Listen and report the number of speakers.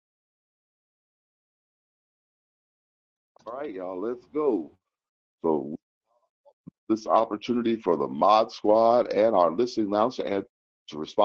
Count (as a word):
one